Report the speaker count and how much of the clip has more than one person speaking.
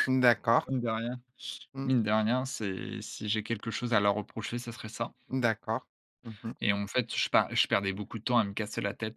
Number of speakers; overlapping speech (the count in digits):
2, about 1%